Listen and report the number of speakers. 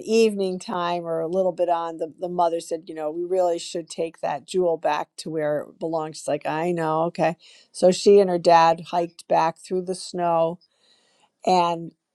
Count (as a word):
one